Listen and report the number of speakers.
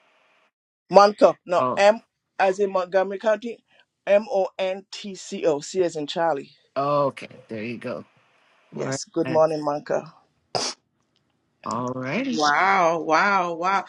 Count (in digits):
3